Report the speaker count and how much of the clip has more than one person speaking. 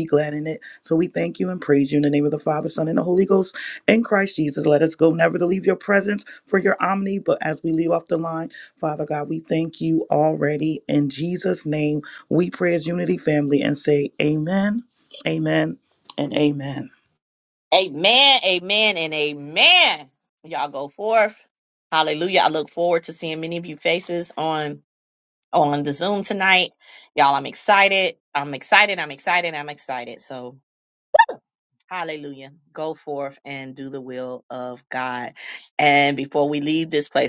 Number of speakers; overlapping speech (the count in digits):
2, no overlap